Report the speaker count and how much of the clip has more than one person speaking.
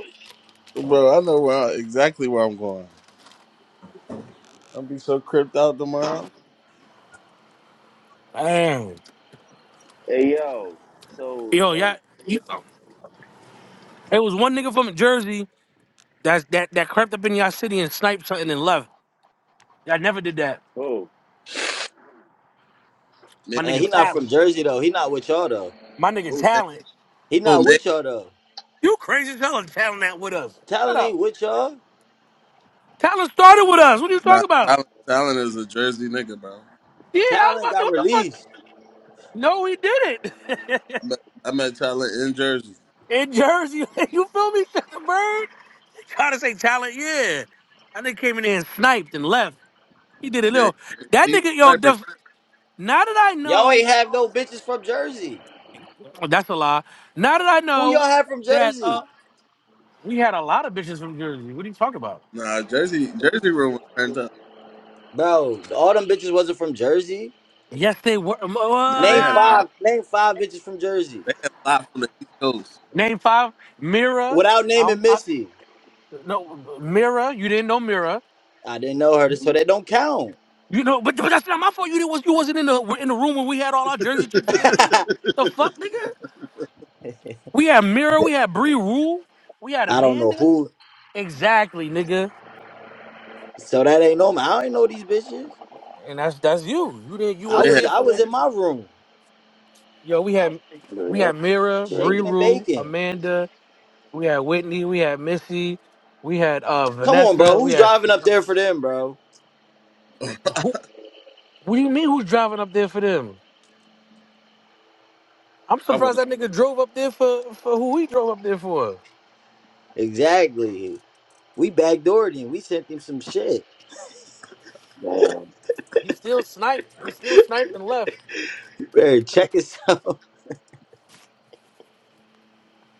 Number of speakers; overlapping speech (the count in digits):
4, about 8%